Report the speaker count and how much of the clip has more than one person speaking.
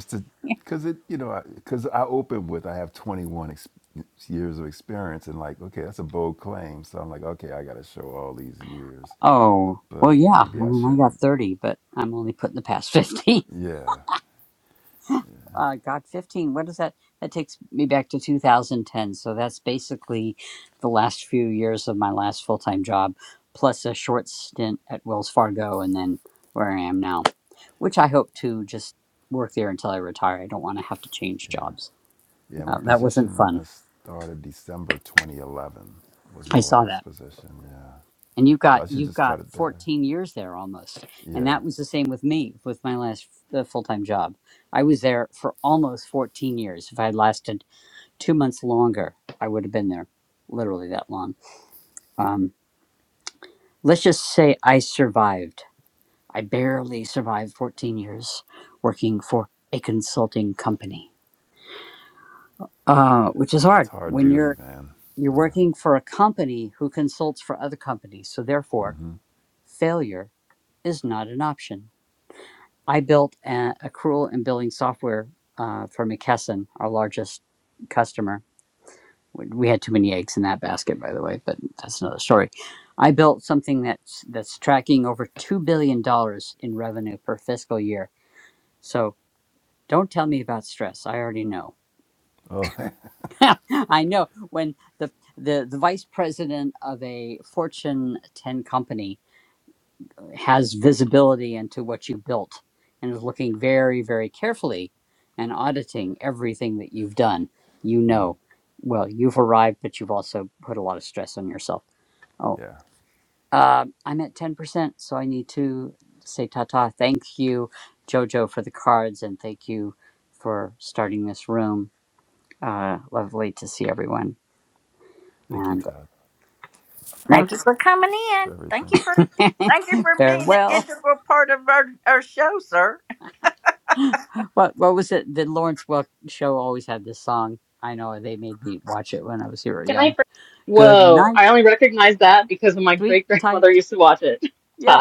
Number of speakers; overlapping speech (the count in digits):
4, about 6%